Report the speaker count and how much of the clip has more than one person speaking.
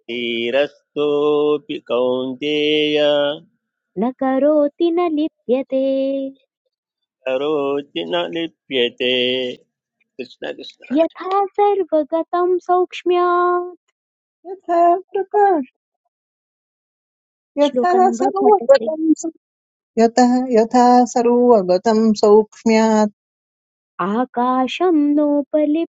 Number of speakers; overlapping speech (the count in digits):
3, about 3%